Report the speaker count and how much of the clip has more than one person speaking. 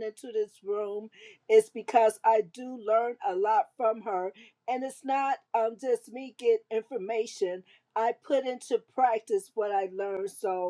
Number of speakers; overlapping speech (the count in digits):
1, no overlap